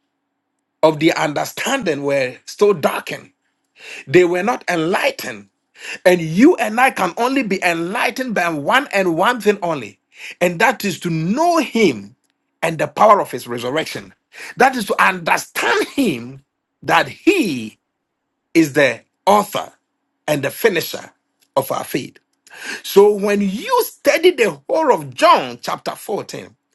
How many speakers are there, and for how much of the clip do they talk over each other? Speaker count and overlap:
1, no overlap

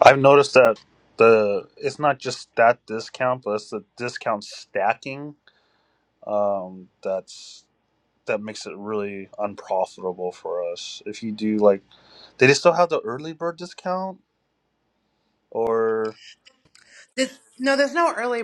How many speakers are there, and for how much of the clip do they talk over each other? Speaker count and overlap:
2, no overlap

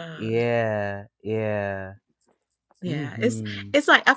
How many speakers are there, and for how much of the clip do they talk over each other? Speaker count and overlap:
2, about 23%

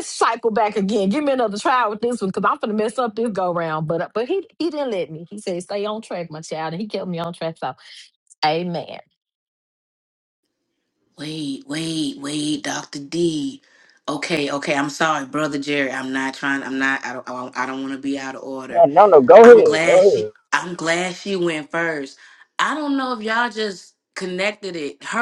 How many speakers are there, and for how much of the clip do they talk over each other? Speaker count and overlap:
3, about 4%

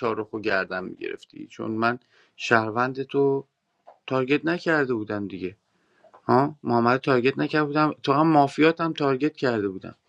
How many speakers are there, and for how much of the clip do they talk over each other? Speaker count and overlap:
1, no overlap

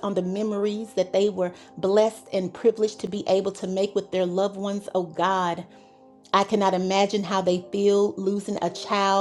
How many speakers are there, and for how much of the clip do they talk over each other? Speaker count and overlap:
1, no overlap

